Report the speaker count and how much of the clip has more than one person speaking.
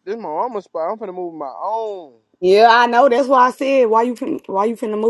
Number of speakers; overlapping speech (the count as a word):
two, no overlap